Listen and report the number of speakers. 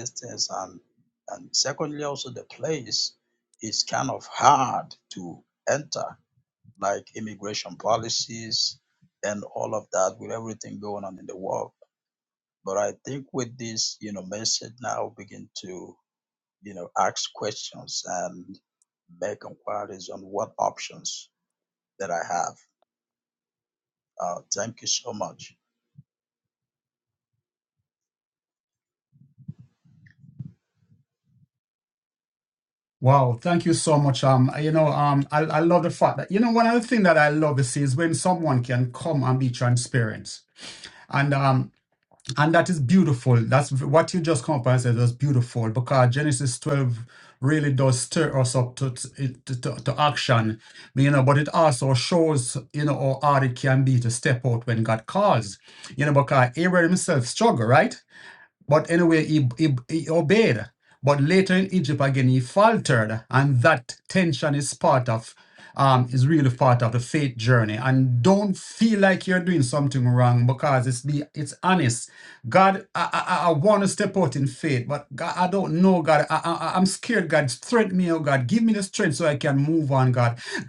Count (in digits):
2